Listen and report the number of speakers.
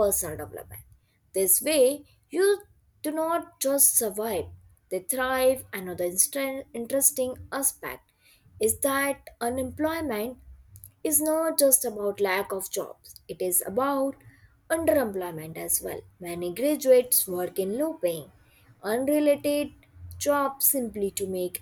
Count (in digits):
1